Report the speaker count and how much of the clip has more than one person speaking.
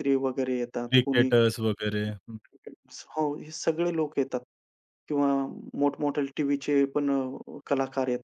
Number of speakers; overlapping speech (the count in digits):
2, about 5%